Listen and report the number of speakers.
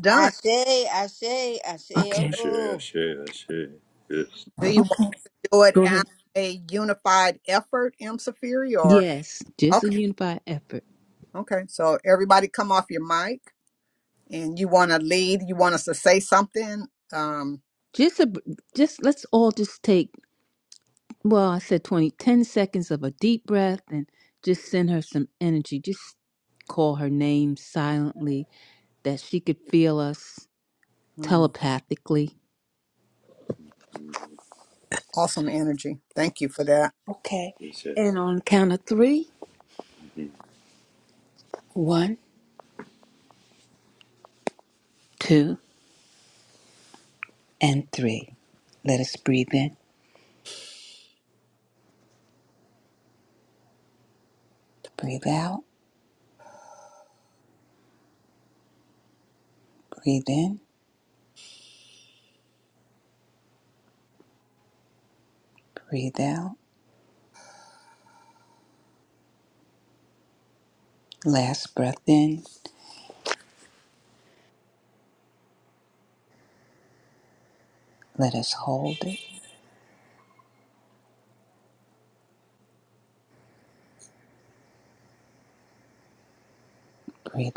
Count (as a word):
four